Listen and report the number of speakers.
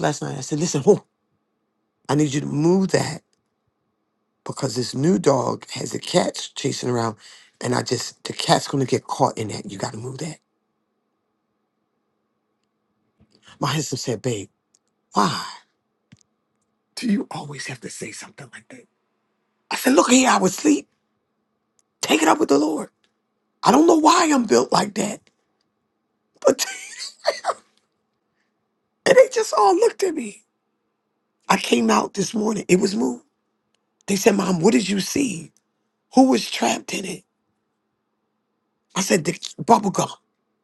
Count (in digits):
1